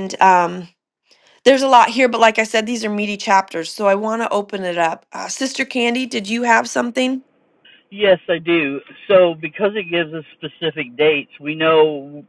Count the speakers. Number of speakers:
two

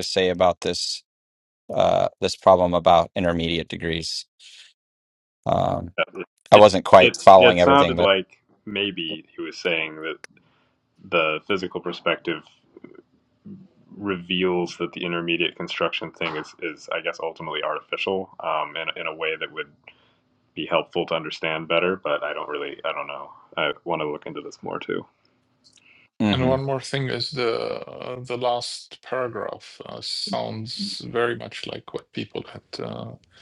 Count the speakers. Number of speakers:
three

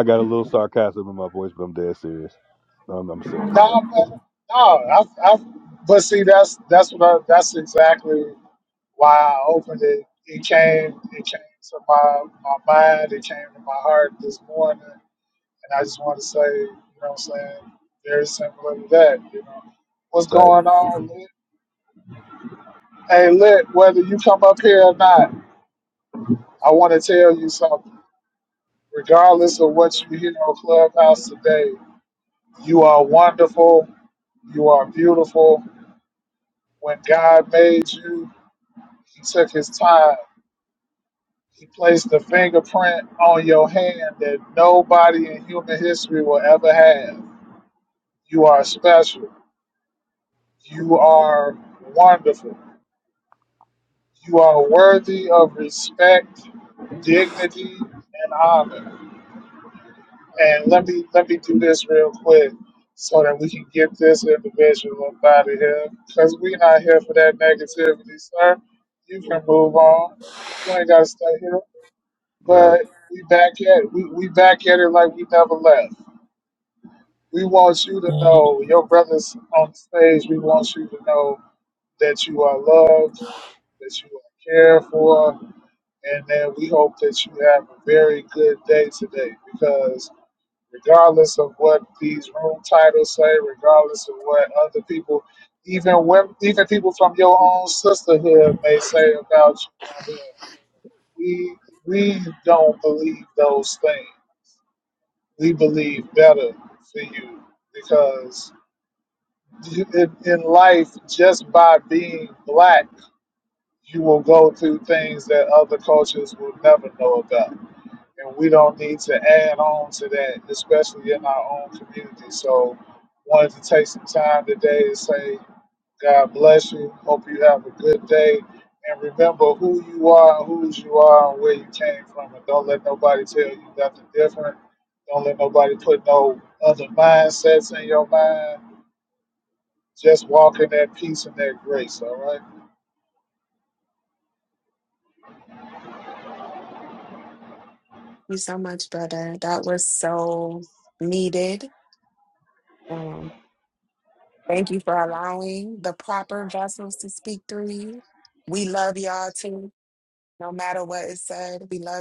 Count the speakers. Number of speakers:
three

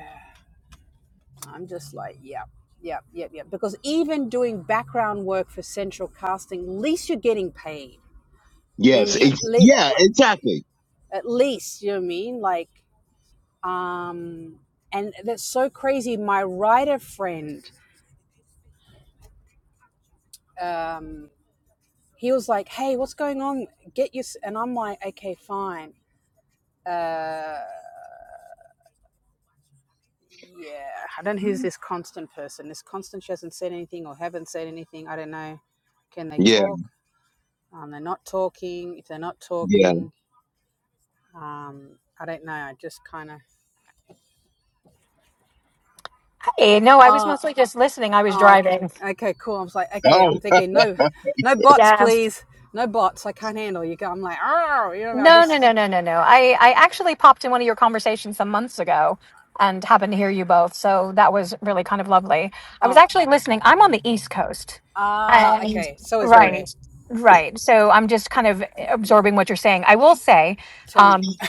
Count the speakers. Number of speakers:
three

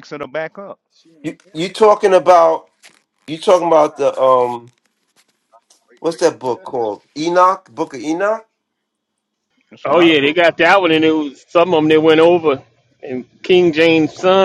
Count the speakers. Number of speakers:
three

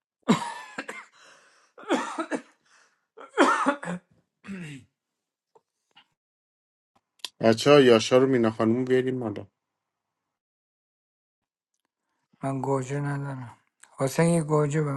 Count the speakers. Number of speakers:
two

